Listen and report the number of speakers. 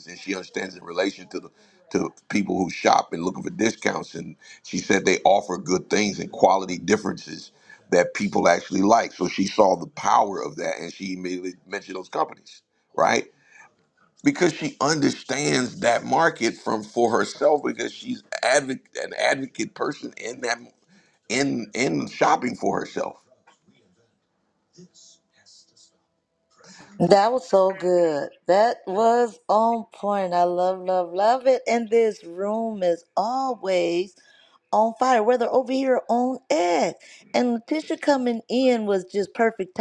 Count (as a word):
two